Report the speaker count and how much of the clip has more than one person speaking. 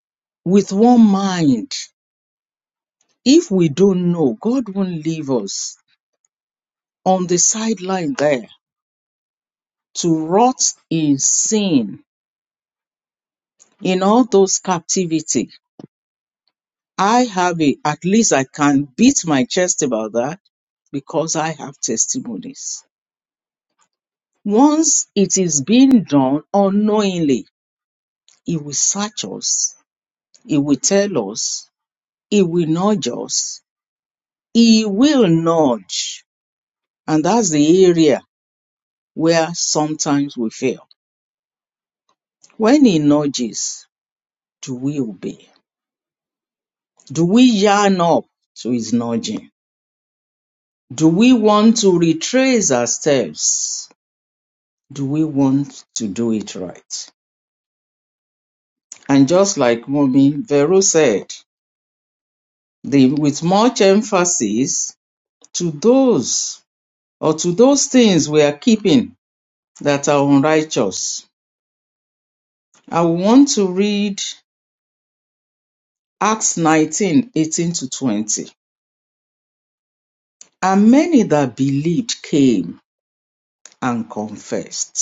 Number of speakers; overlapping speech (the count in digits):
1, no overlap